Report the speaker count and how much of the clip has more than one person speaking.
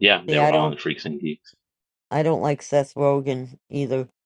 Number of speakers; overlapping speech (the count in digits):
2, about 10%